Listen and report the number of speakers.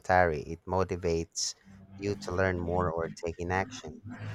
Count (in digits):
1